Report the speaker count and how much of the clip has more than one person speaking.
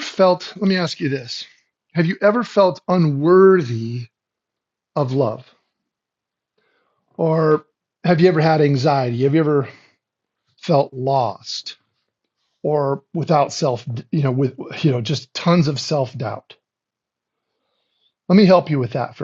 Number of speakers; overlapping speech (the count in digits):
1, no overlap